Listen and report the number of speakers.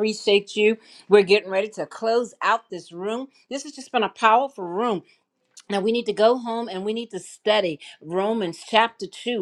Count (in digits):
1